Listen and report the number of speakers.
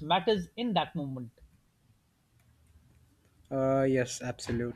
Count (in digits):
2